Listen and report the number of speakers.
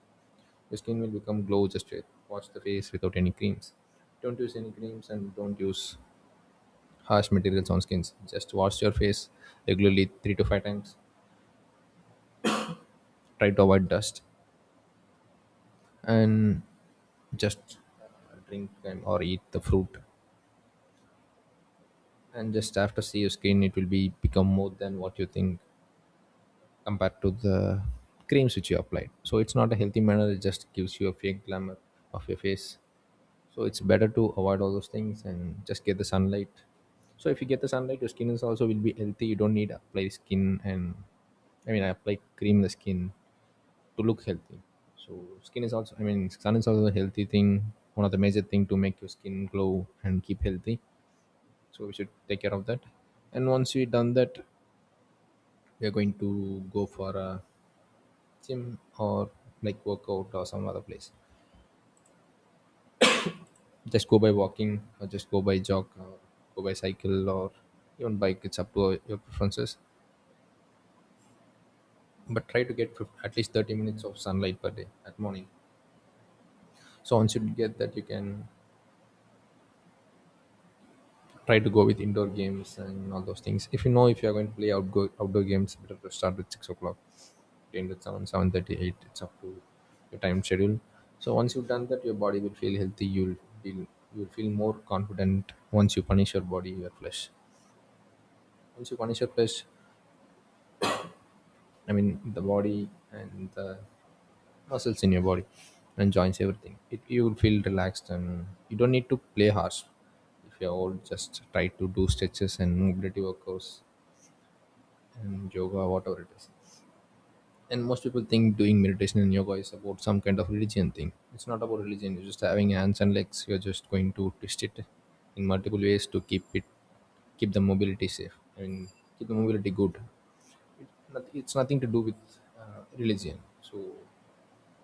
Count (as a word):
one